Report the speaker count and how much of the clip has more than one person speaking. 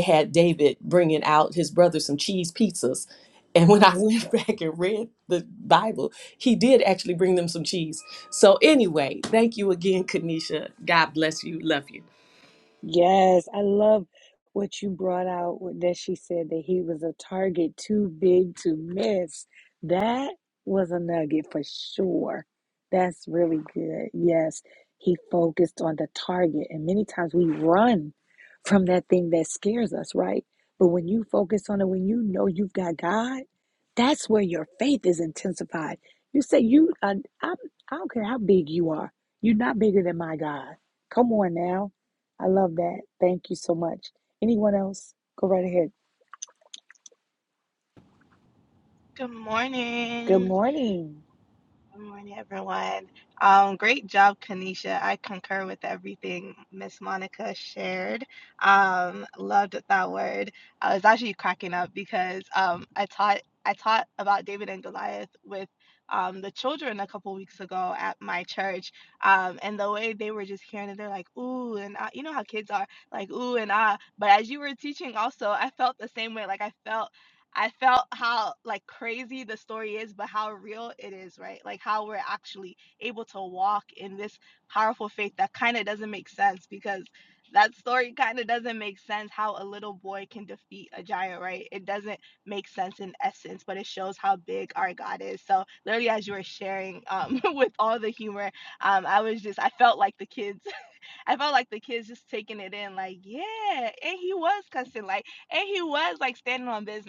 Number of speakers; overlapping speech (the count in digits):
3, under 1%